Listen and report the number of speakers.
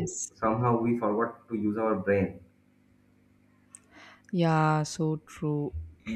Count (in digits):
2